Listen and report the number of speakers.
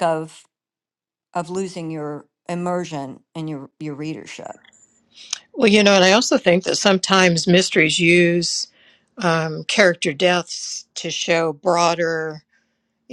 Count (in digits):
2